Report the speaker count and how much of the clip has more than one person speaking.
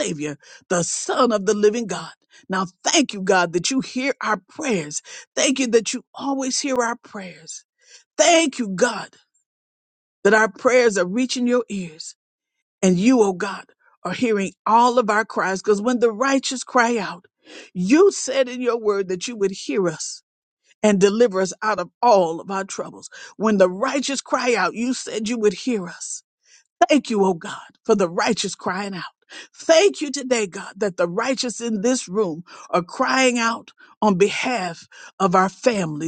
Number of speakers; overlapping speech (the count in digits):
1, no overlap